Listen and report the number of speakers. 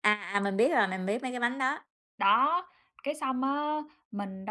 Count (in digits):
2